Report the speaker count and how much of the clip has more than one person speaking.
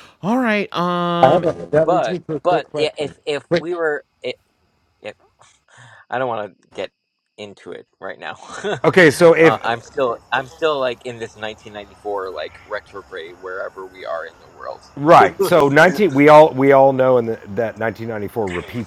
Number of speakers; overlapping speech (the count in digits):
3, about 6%